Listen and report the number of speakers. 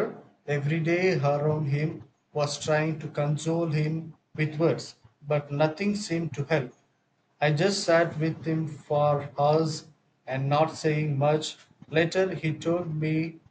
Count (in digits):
1